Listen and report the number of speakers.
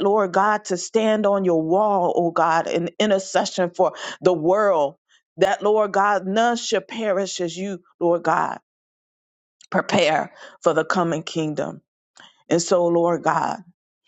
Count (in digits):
1